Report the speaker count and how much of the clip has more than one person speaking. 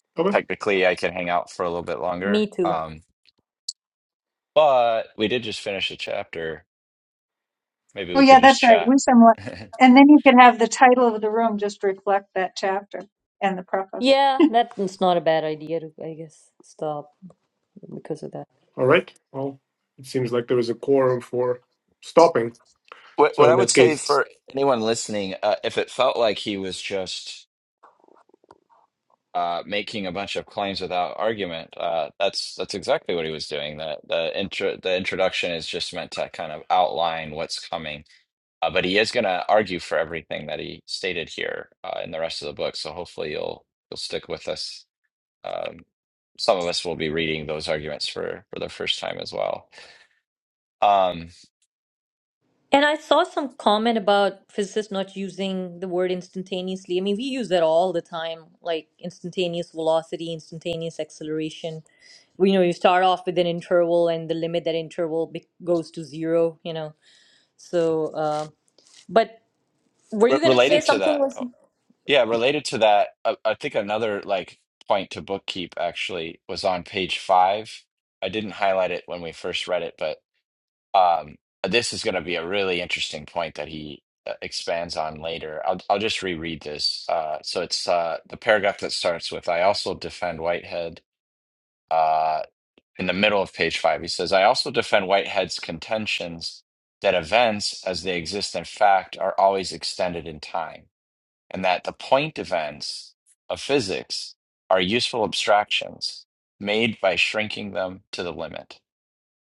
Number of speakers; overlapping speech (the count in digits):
4, about 3%